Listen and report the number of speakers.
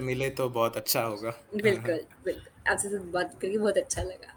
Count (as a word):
two